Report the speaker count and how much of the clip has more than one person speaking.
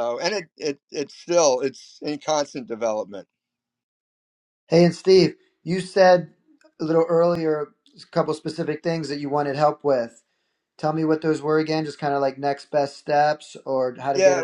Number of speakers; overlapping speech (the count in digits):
2, about 2%